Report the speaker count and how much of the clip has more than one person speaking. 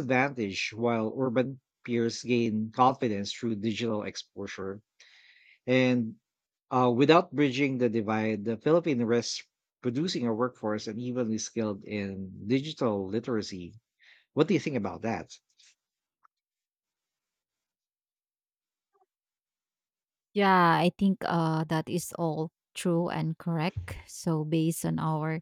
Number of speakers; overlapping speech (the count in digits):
2, no overlap